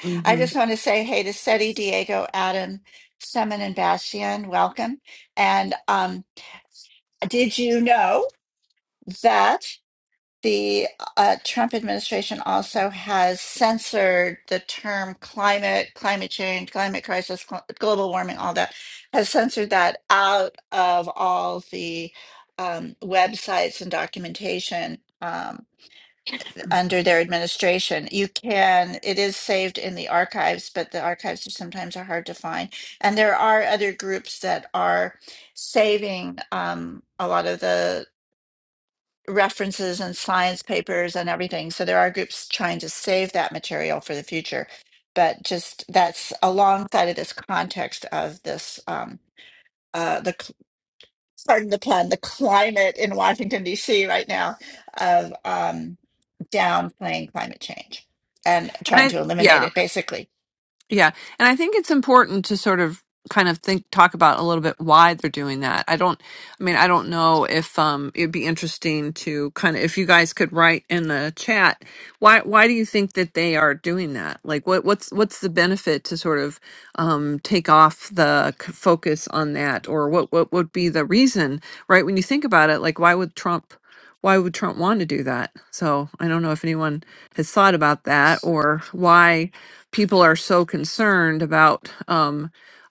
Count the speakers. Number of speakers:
2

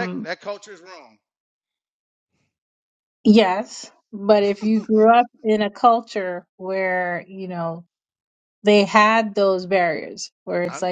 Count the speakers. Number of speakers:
2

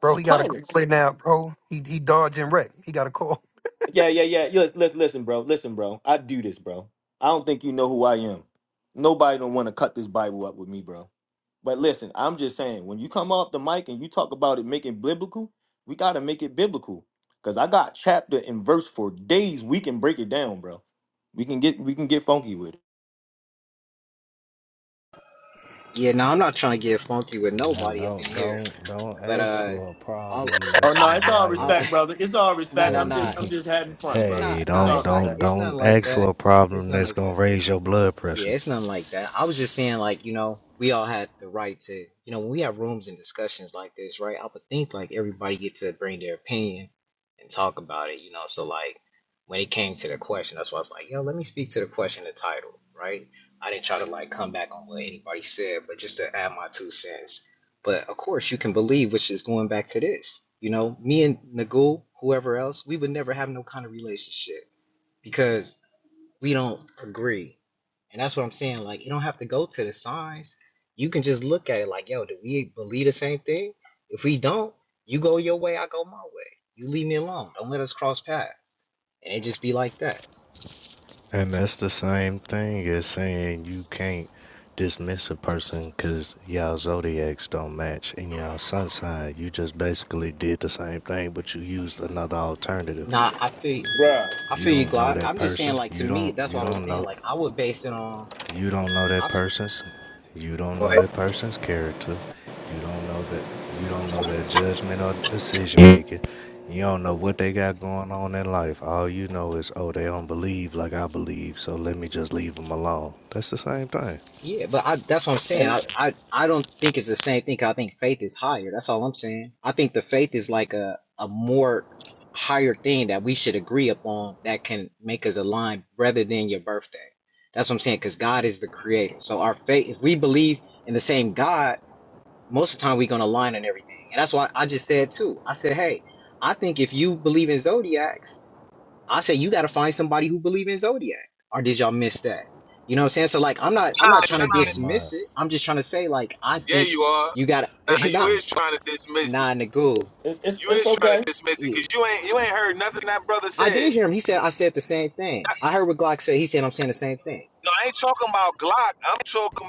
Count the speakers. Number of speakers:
5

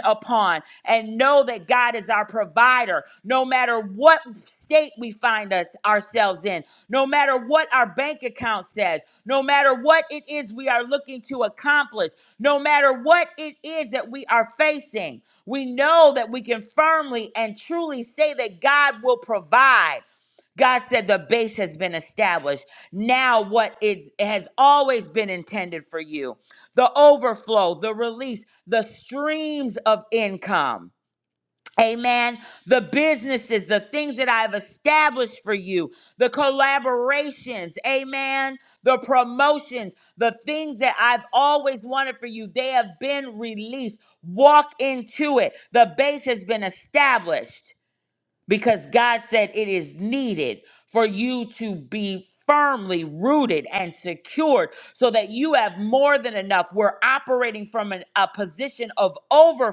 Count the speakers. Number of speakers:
1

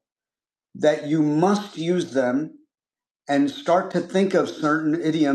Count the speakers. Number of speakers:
1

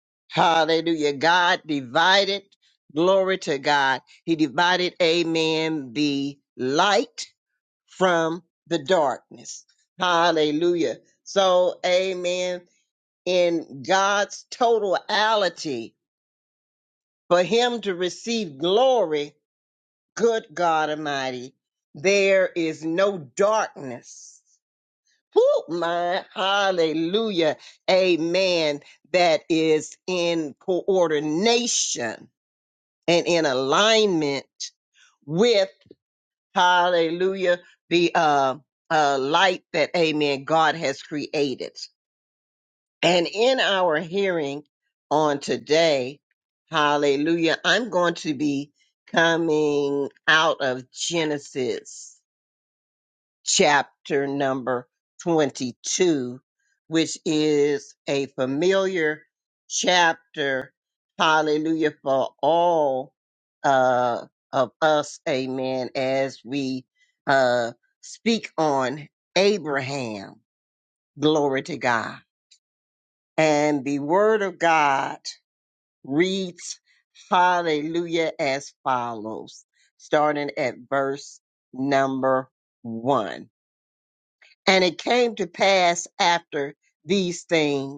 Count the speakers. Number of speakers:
1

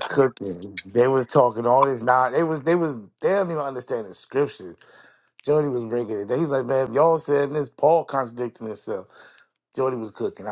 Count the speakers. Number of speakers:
1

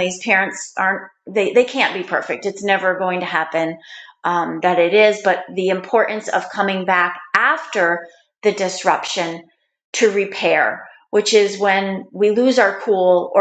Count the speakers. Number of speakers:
1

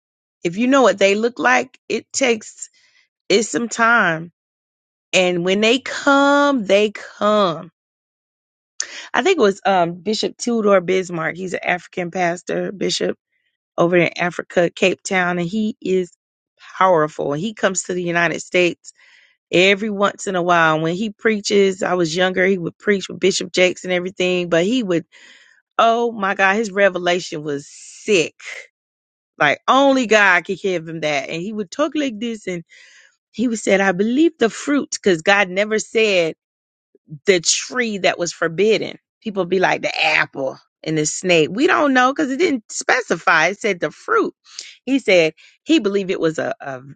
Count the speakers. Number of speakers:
1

